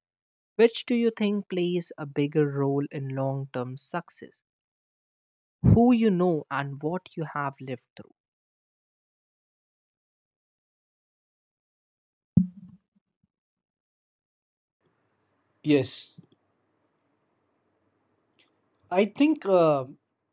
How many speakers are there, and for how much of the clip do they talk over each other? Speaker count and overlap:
2, no overlap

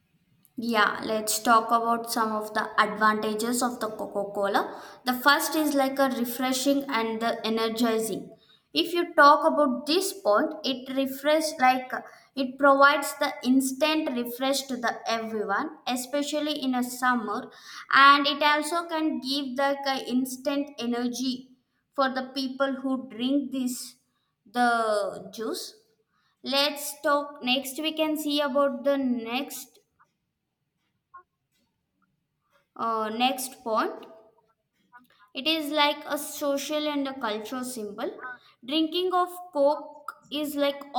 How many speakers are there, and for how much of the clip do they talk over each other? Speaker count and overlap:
1, no overlap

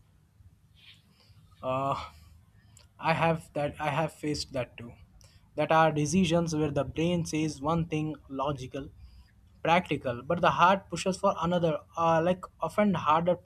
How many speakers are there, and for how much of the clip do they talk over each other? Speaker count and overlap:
1, no overlap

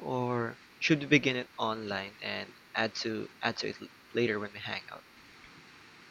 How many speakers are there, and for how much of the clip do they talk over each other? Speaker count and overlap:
1, no overlap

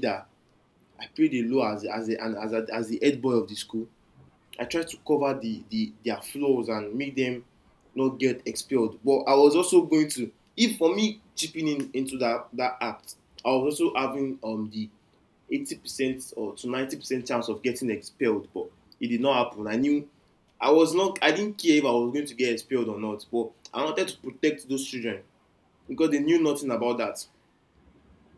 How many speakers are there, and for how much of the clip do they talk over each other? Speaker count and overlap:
1, no overlap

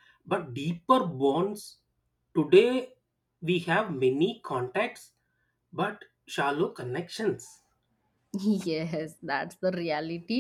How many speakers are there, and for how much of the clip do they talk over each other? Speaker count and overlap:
2, no overlap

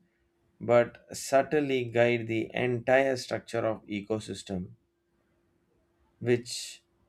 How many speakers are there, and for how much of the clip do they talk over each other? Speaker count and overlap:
1, no overlap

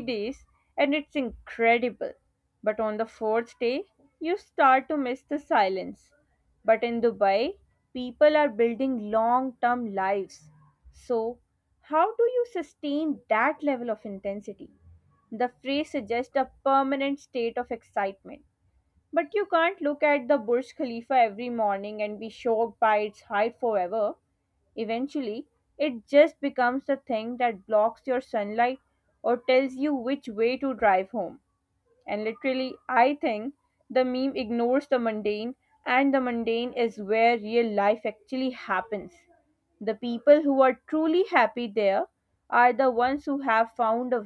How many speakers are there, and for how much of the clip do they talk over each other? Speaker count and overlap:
1, no overlap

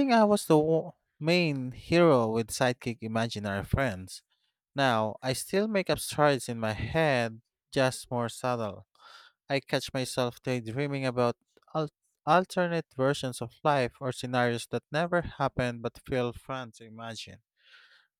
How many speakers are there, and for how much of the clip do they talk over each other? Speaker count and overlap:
1, no overlap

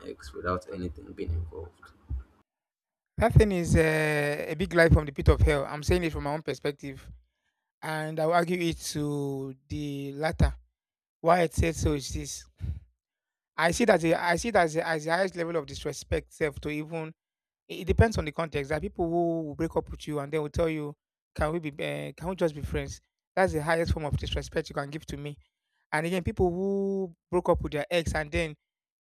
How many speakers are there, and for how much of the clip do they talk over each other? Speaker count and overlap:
2, no overlap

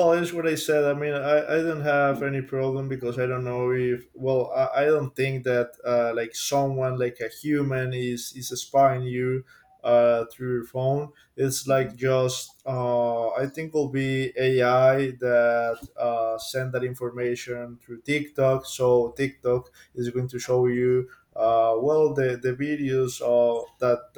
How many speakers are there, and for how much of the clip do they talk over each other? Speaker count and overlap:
1, no overlap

